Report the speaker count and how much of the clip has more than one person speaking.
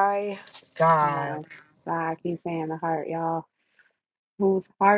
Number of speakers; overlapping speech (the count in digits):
2, about 8%